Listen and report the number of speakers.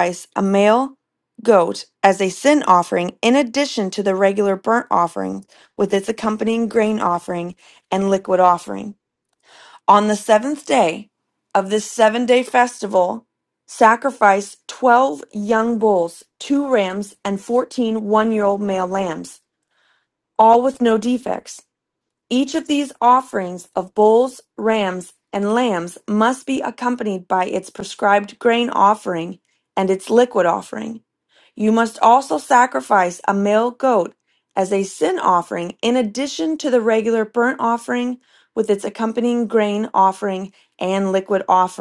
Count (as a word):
one